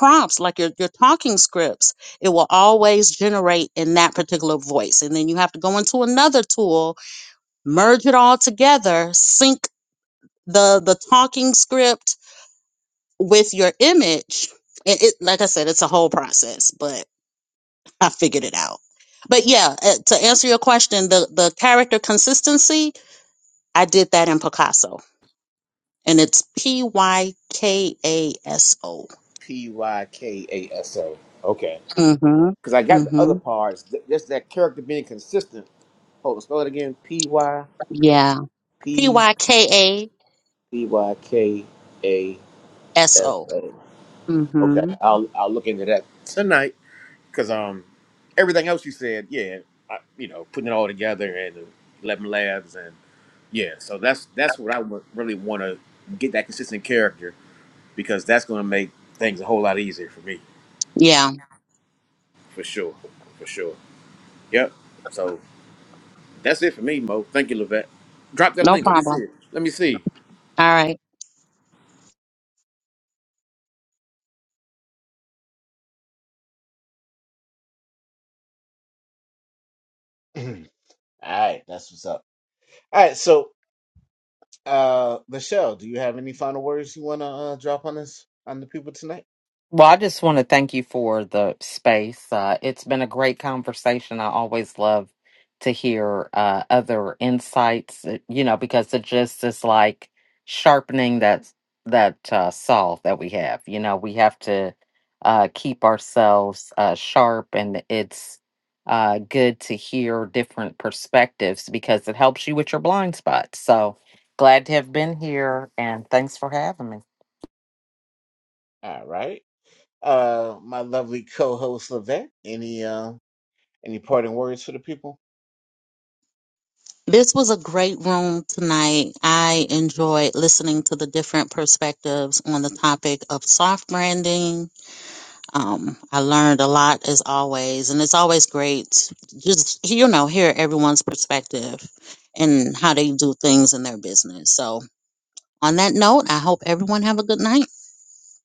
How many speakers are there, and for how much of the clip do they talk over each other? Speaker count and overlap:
four, about 1%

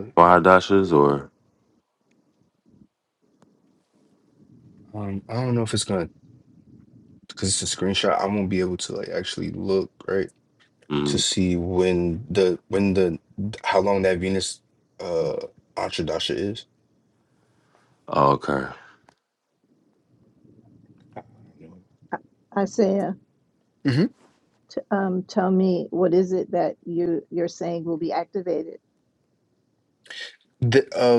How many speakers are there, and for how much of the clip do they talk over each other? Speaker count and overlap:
three, about 1%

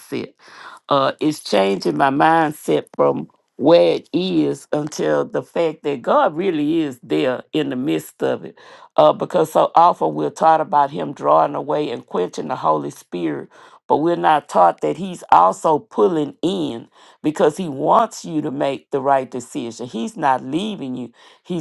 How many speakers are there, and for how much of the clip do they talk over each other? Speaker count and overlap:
one, no overlap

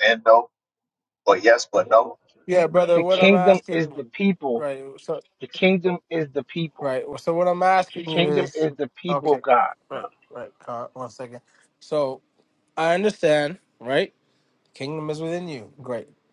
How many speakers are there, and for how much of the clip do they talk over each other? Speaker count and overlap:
three, about 16%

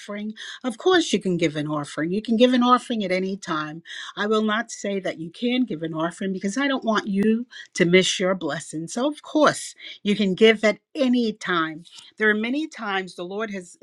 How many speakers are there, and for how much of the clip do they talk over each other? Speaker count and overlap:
one, no overlap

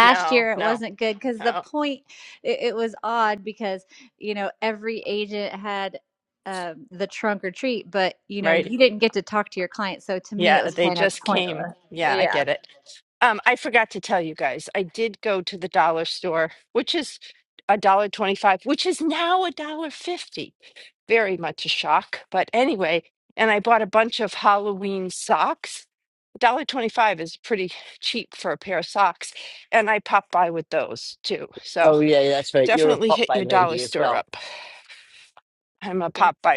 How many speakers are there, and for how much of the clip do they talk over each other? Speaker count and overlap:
three, about 14%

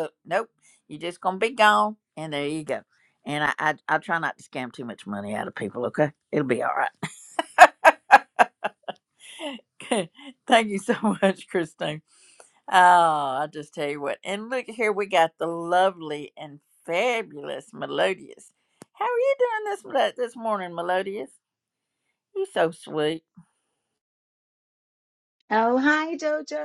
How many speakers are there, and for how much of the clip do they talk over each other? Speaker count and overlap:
two, no overlap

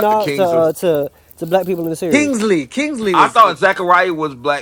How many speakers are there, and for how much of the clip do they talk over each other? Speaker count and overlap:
three, about 24%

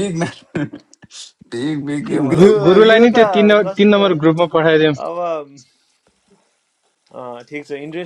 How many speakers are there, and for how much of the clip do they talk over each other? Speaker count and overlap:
three, about 23%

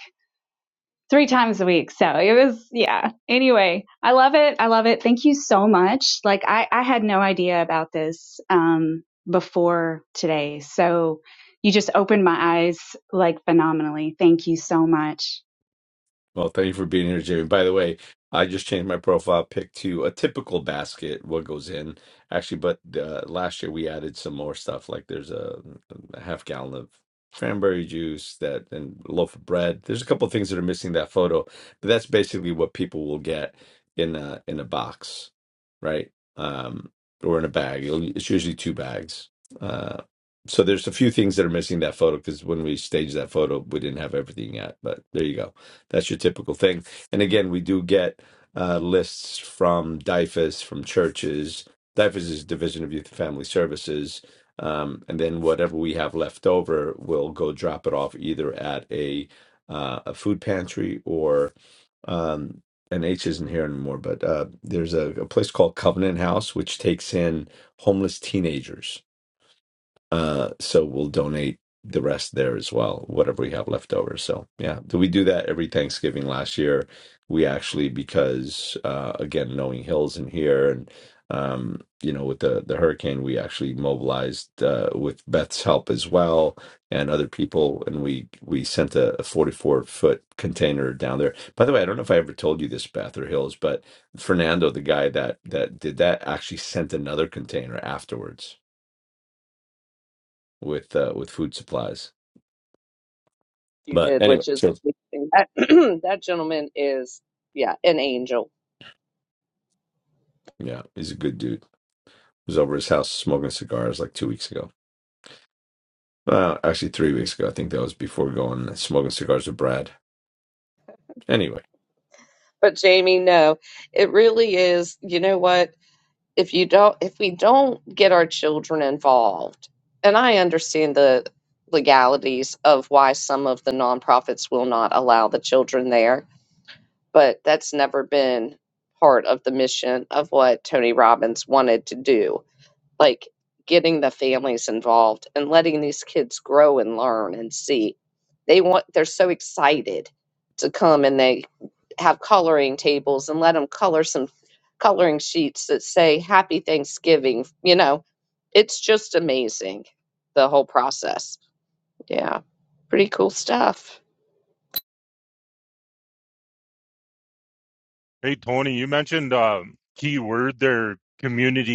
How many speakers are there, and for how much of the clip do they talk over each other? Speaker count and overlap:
four, under 1%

